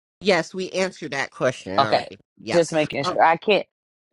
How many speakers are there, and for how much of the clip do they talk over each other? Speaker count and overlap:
two, about 24%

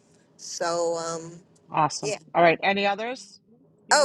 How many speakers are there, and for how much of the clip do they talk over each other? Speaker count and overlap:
two, about 8%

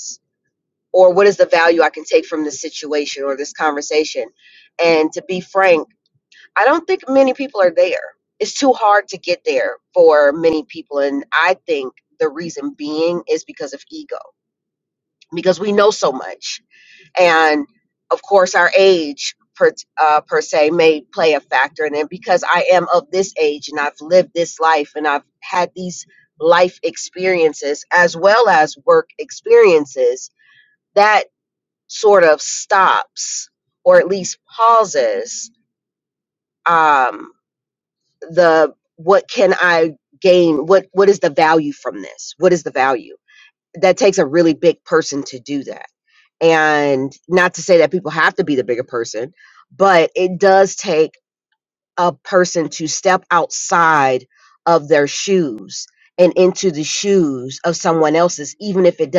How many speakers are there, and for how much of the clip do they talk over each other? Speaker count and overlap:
one, no overlap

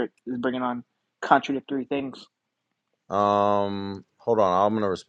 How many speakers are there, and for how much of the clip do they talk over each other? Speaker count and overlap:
two, no overlap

